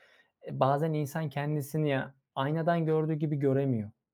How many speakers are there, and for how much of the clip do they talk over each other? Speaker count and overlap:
1, no overlap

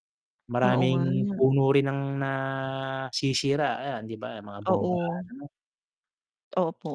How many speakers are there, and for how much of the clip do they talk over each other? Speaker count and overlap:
2, about 16%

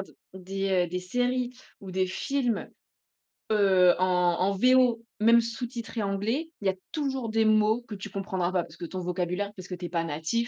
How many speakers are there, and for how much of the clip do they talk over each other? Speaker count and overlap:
1, no overlap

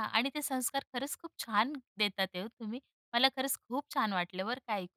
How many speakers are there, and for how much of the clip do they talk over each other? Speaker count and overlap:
1, no overlap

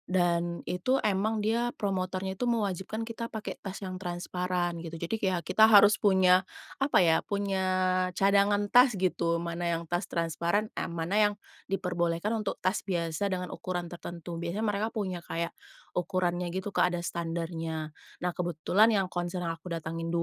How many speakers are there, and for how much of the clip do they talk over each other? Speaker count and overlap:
1, no overlap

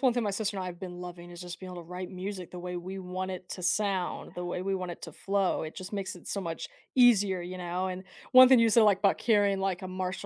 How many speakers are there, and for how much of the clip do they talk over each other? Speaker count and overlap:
1, no overlap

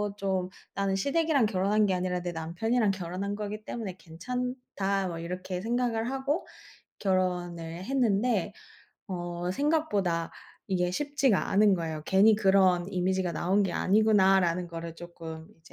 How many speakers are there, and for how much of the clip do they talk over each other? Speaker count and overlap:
1, no overlap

